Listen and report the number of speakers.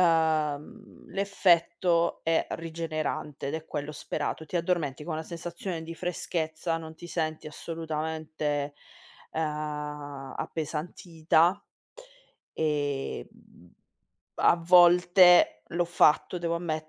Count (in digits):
1